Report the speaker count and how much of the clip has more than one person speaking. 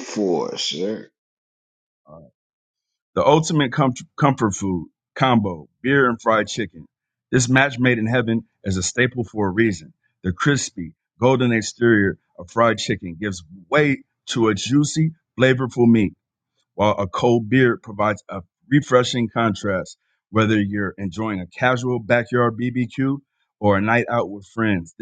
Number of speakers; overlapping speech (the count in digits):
2, no overlap